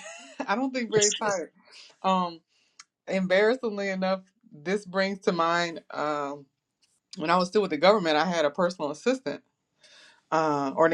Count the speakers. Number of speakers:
1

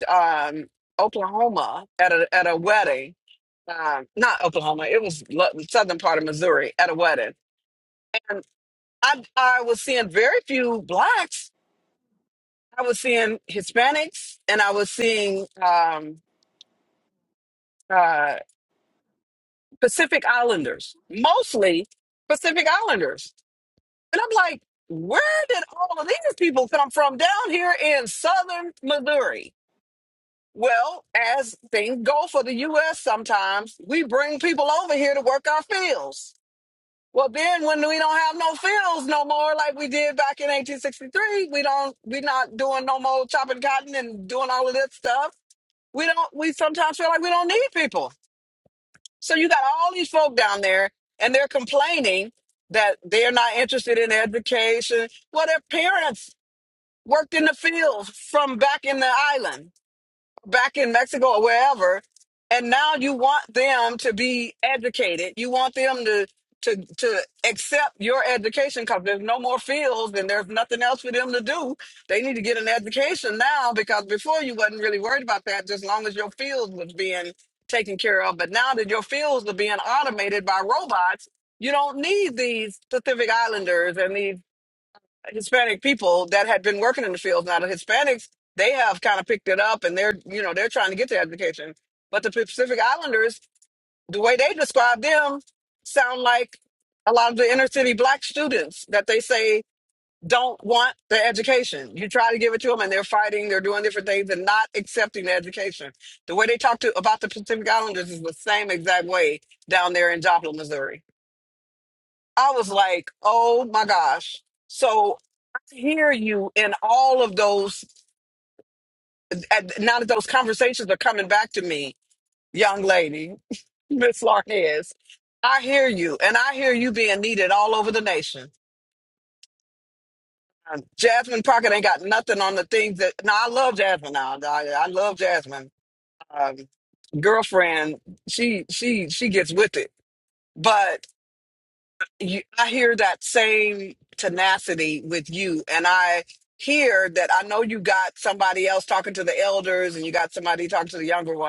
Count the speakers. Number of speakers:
1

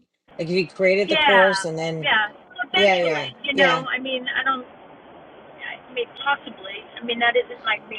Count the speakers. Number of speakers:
2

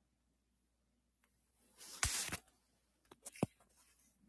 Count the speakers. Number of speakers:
0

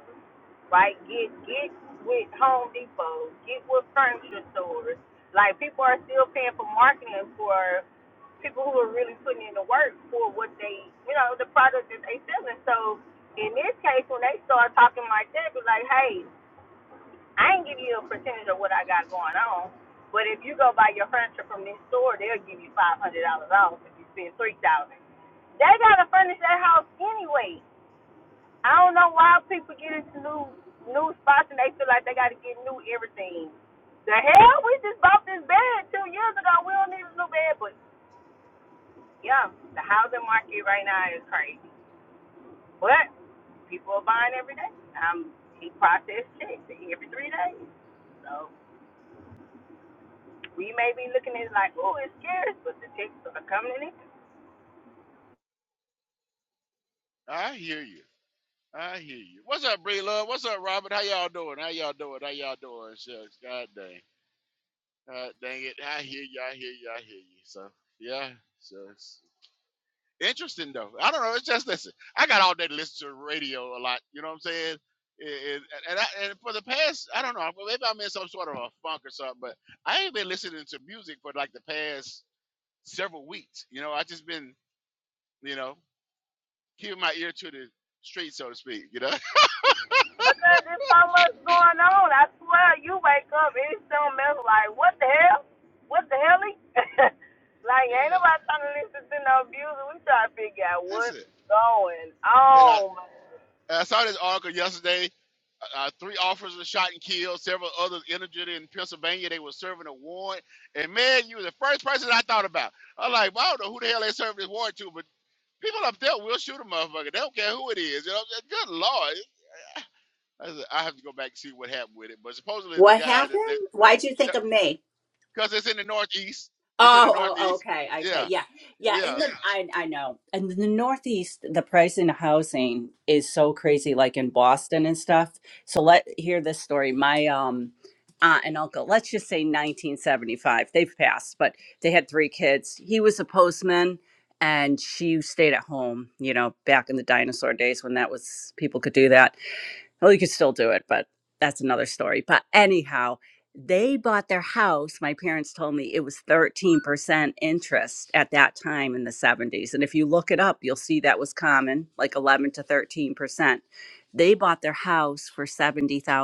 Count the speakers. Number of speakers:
3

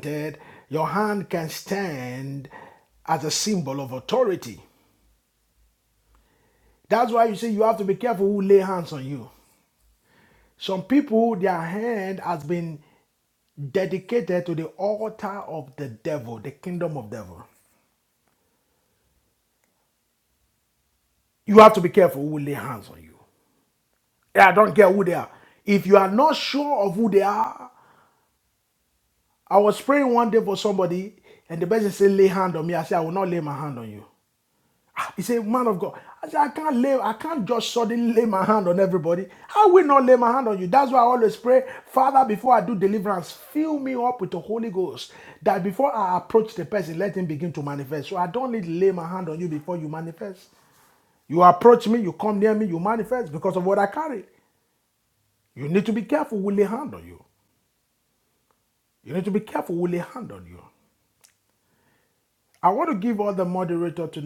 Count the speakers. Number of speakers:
1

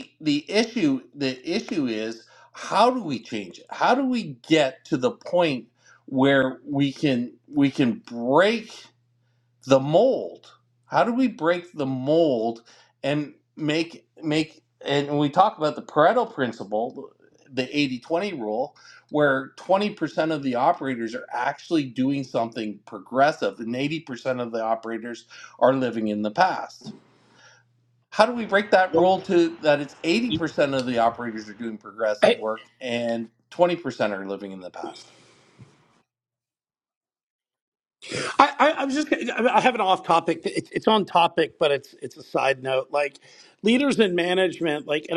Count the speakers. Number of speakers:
2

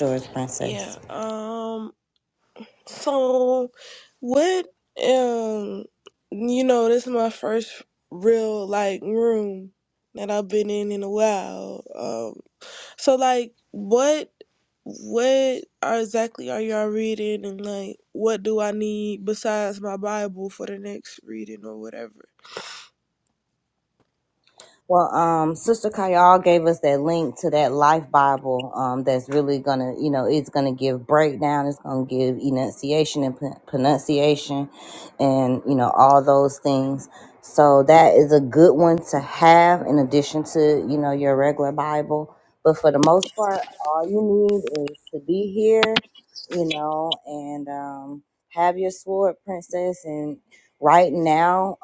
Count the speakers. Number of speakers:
2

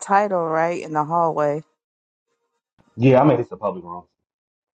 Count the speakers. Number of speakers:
2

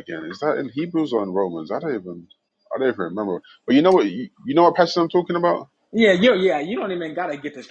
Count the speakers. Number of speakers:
2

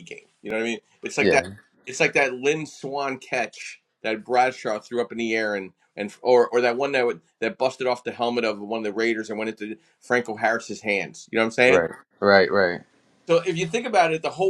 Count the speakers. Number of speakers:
2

